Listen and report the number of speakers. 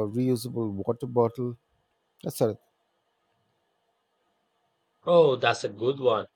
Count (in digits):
2